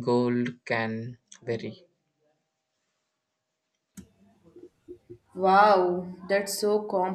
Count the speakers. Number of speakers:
2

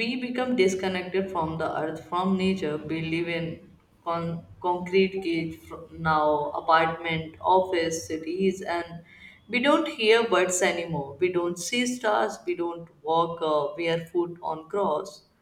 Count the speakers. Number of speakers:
1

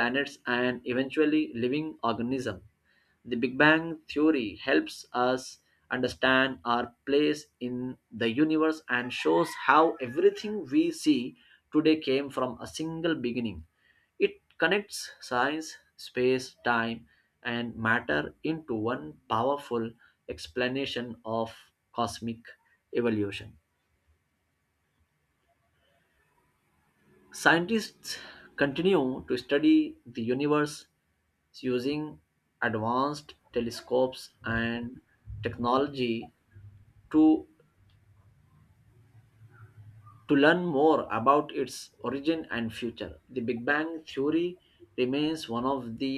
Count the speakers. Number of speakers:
1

